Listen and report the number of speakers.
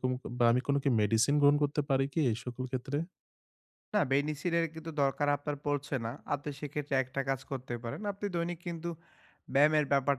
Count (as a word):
two